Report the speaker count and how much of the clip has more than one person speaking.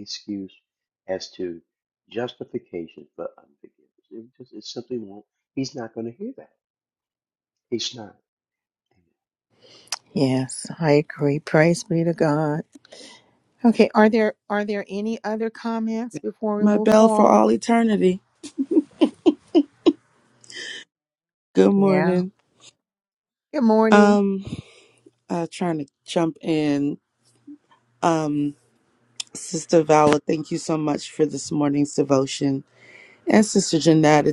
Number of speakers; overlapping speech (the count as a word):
three, about 4%